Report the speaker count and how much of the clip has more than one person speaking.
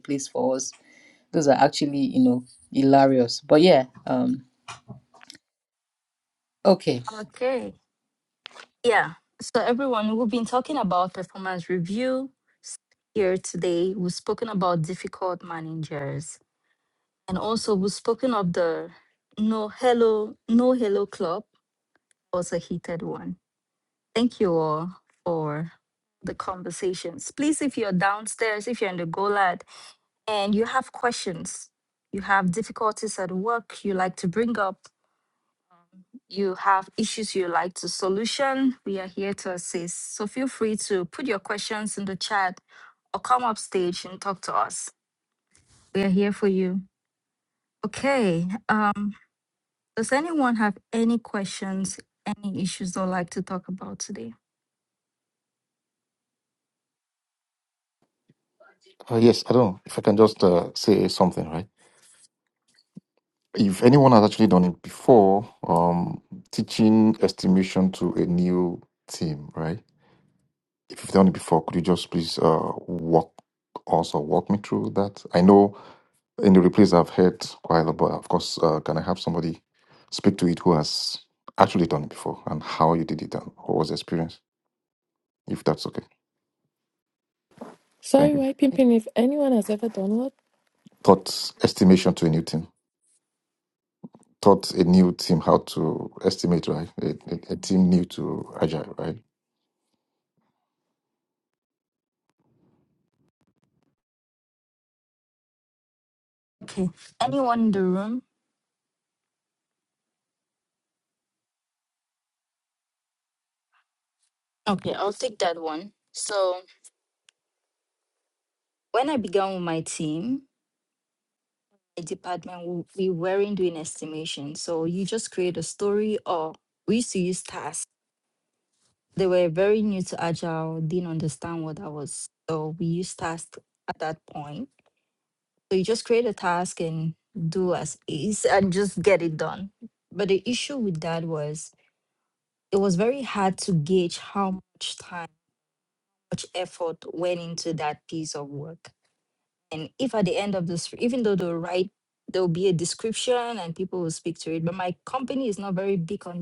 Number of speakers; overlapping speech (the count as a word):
four, under 1%